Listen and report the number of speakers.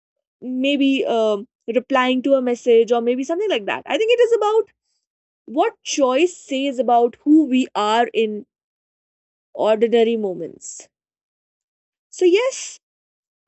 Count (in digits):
1